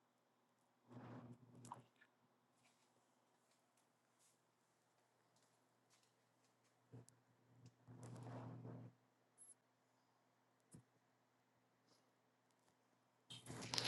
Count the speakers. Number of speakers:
0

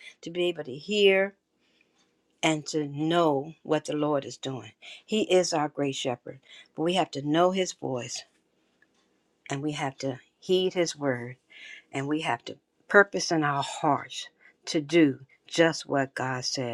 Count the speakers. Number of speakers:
1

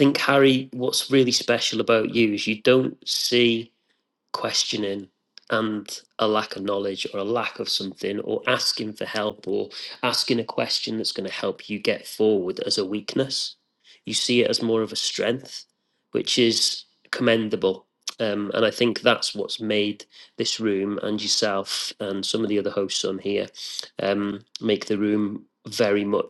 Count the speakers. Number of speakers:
1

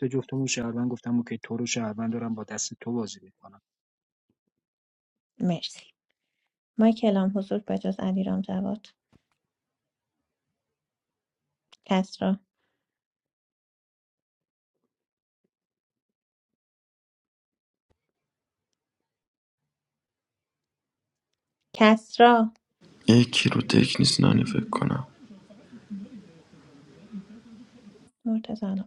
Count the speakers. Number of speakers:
3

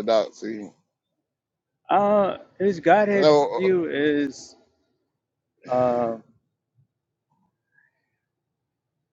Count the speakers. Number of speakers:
2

